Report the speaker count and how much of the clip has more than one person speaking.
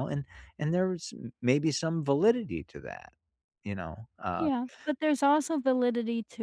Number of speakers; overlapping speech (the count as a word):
two, about 2%